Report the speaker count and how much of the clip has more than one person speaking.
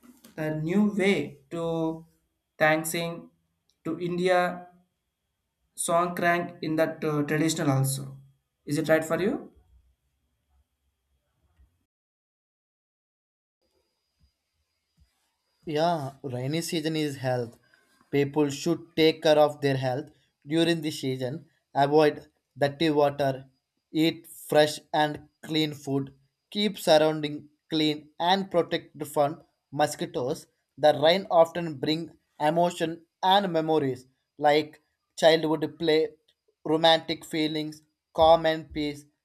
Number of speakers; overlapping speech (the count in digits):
2, no overlap